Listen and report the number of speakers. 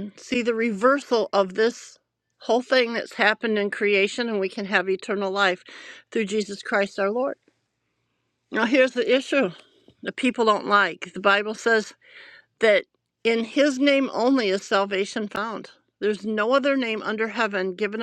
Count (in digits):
1